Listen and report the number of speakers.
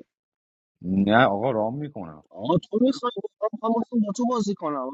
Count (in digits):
2